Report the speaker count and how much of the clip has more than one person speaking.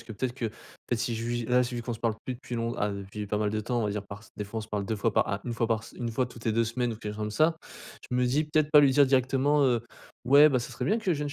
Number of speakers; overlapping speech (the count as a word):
one, no overlap